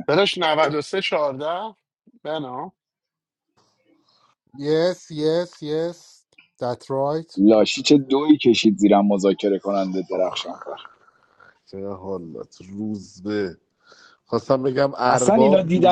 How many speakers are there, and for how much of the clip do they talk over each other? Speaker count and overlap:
4, about 5%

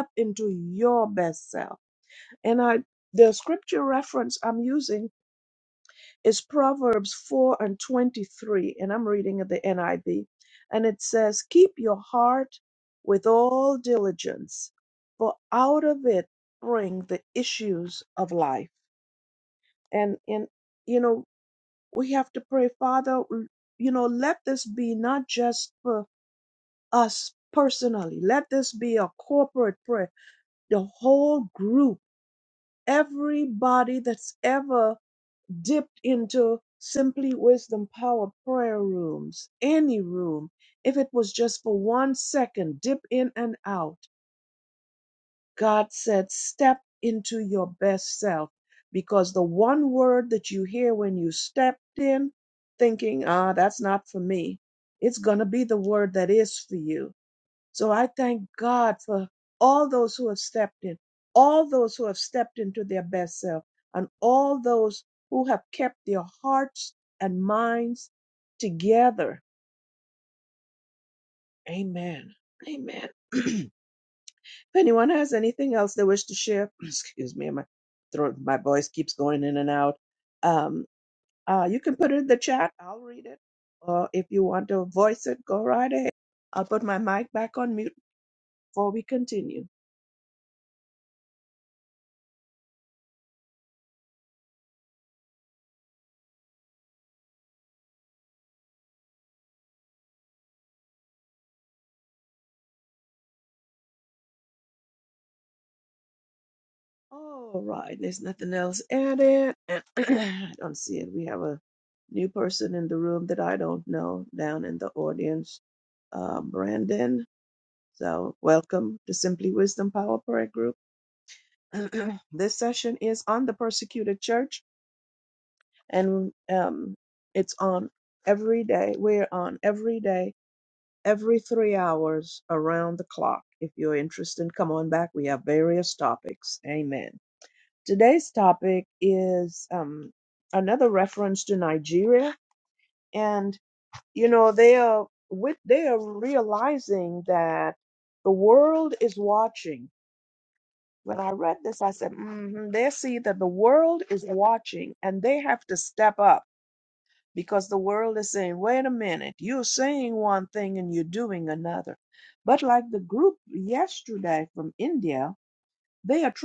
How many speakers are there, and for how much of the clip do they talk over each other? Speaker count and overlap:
1, no overlap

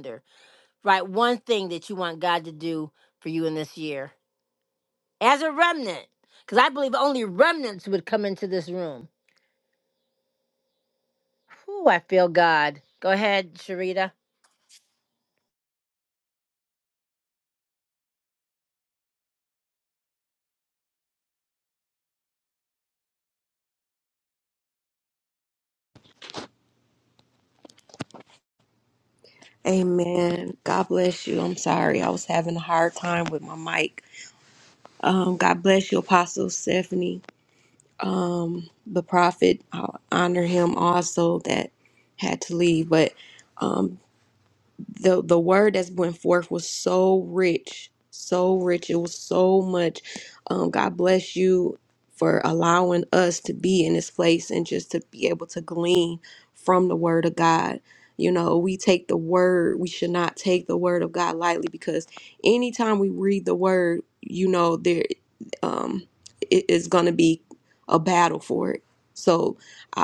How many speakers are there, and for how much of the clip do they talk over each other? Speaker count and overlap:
2, no overlap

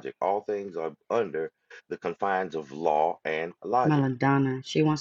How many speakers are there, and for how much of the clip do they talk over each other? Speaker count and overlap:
2, about 4%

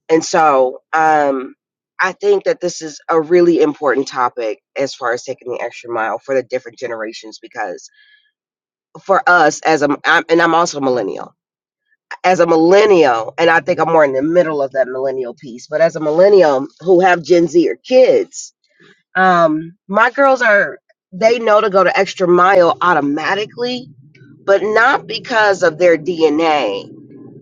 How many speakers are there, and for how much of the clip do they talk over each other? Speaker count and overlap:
1, no overlap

